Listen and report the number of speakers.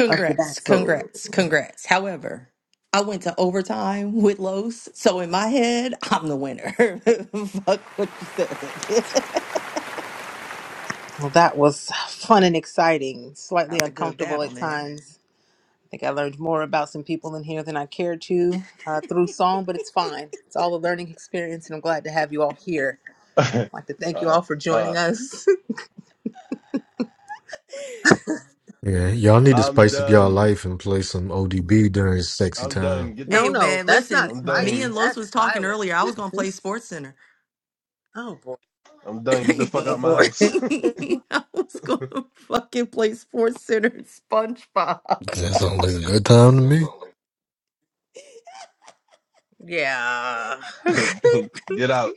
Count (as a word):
four